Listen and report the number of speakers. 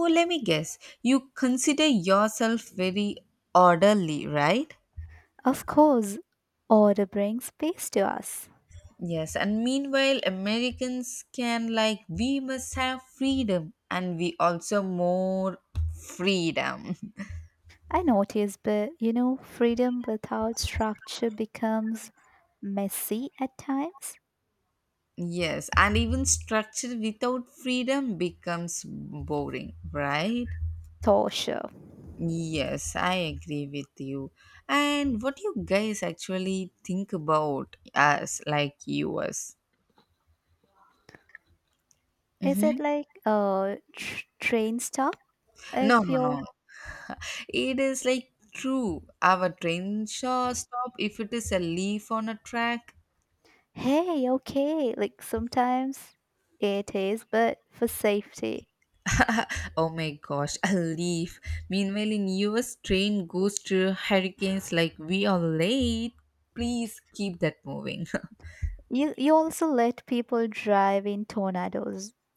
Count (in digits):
2